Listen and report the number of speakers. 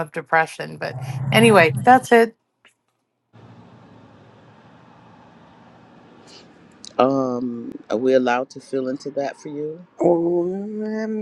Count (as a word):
three